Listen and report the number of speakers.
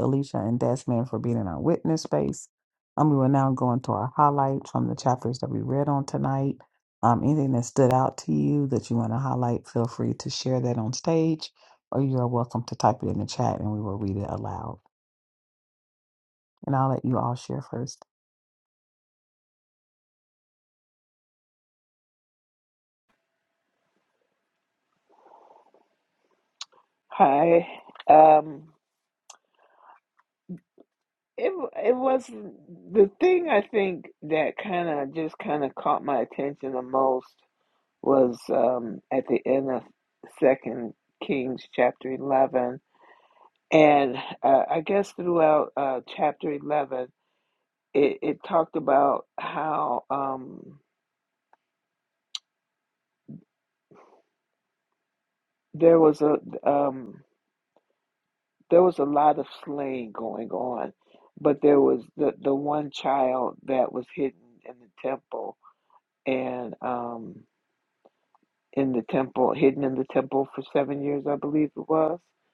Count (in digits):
2